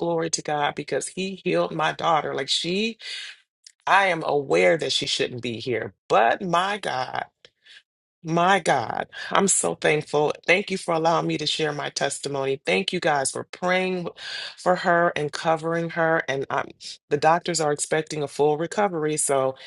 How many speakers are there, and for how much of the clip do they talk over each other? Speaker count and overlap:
1, no overlap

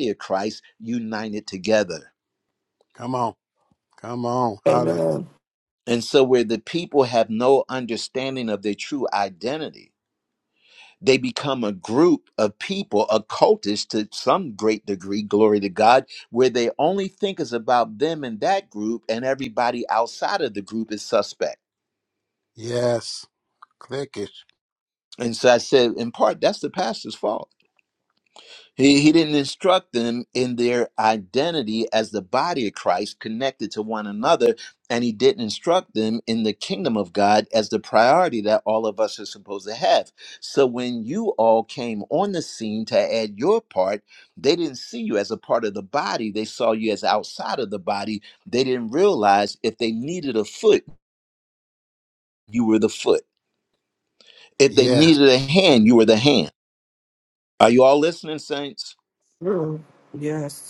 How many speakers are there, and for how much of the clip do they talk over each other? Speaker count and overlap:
3, about 1%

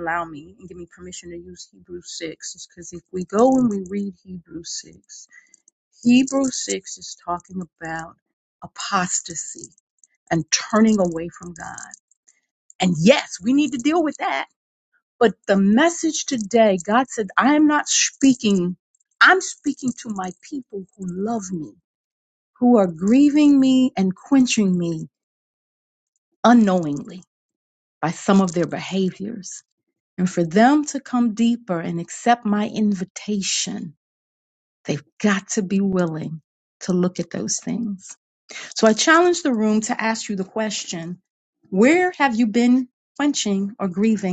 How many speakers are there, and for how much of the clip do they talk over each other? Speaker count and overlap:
1, no overlap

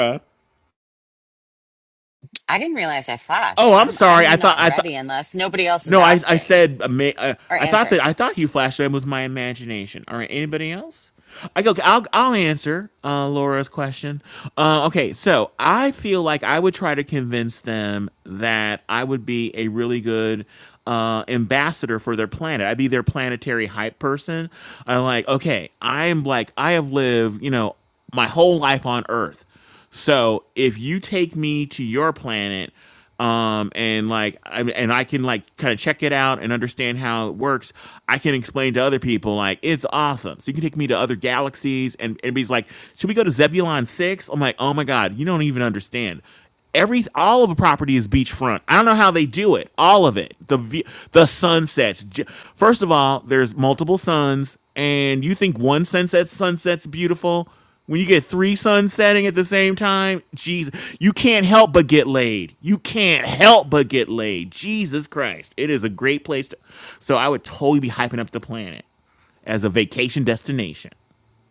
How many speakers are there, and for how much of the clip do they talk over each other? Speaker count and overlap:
2, about 4%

